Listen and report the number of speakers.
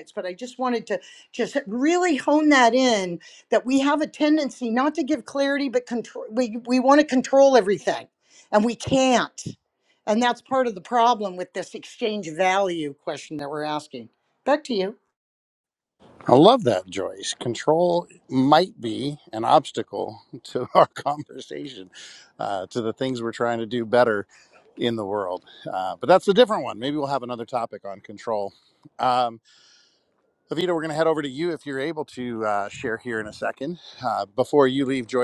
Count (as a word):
two